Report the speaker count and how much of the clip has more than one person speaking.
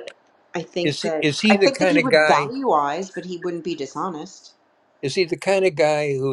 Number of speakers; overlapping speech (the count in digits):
2, about 26%